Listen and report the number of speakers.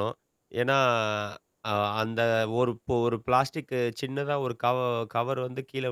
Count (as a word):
one